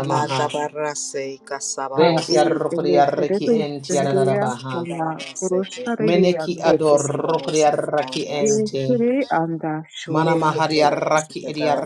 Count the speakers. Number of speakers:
three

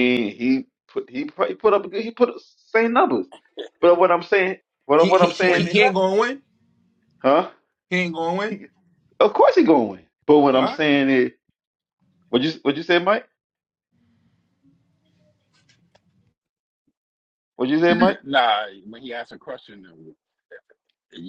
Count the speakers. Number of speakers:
three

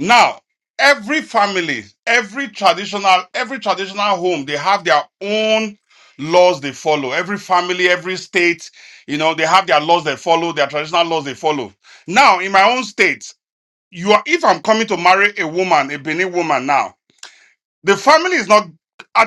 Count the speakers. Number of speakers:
one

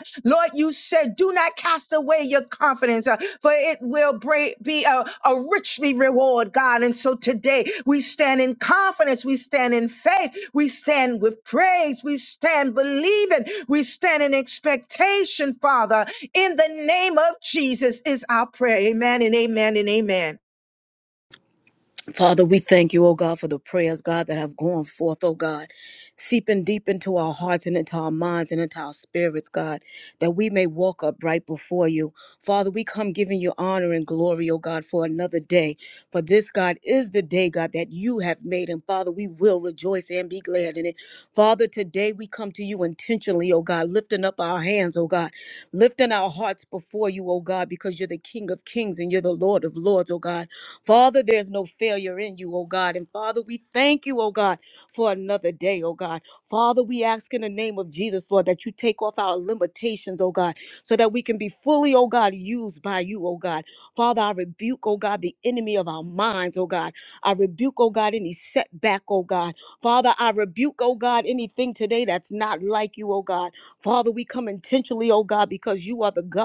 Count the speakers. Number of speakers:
two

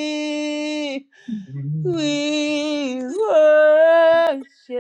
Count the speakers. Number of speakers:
one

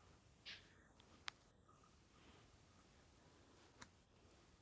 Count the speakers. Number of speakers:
zero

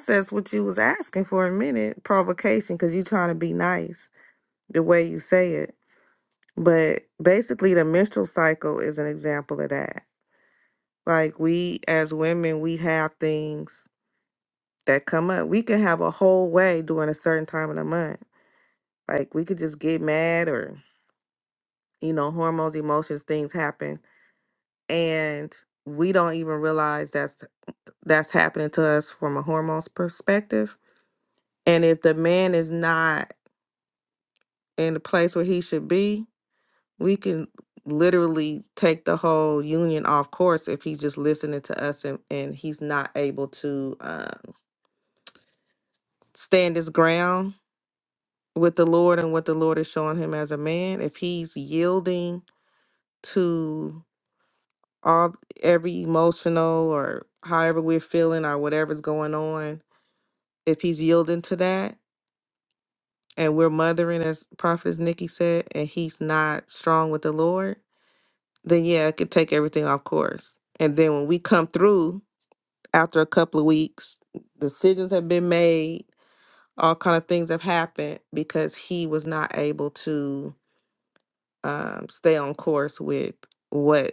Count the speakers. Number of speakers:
one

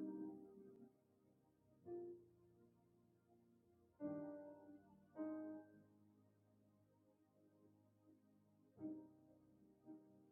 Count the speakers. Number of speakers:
zero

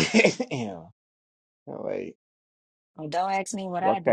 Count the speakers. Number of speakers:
two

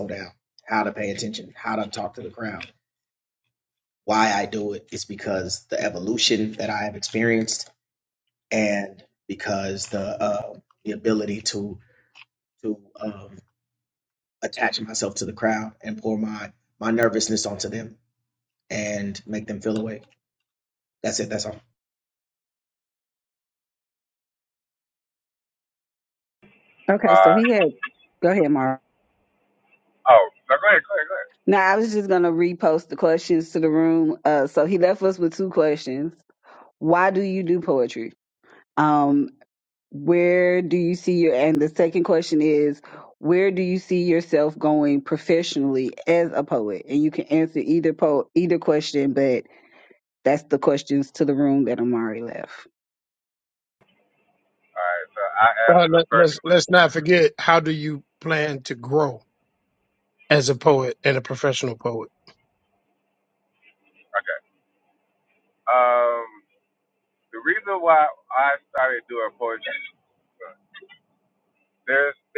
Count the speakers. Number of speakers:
four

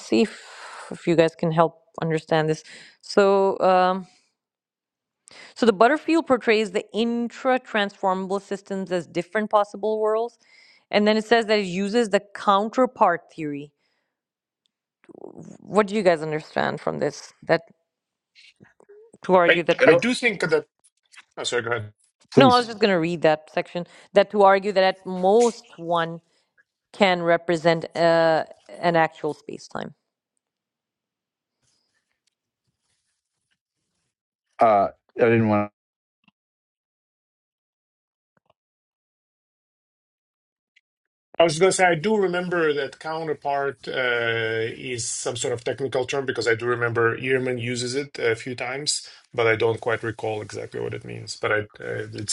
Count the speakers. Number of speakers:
three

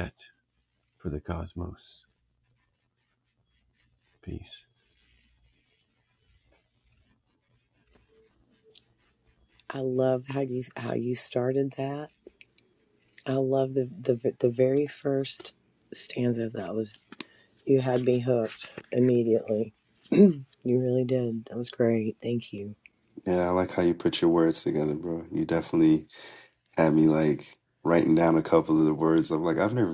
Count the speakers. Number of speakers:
three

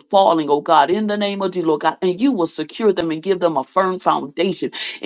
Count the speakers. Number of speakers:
one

